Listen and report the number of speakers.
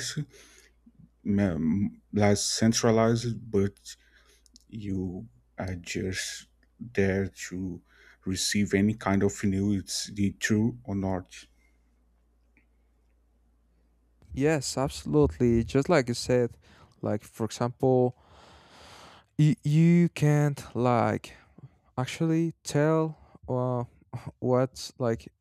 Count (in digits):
2